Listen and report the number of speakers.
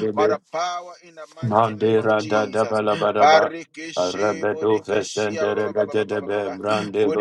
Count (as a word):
two